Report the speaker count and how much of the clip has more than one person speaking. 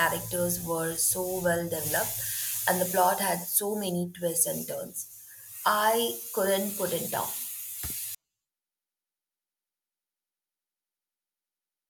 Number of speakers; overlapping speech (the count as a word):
one, no overlap